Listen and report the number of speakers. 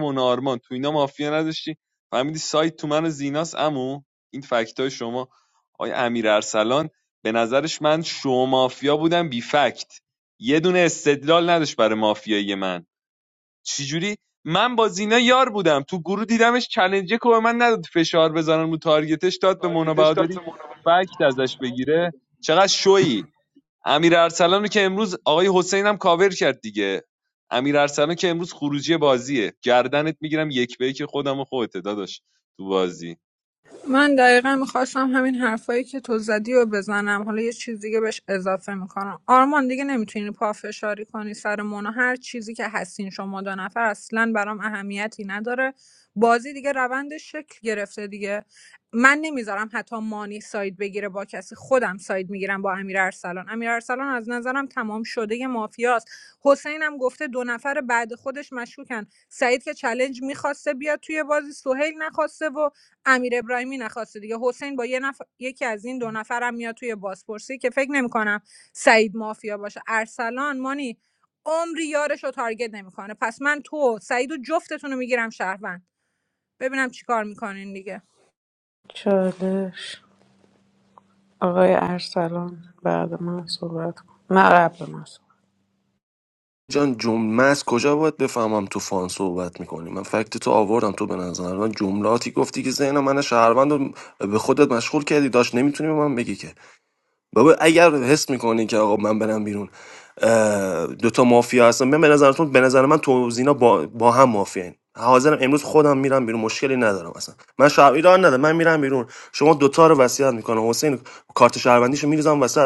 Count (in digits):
4